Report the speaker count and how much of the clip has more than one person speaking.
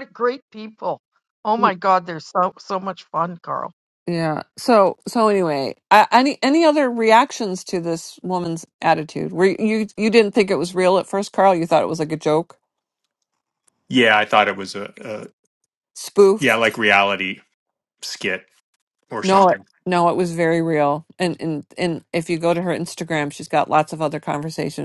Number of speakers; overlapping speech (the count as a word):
three, about 2%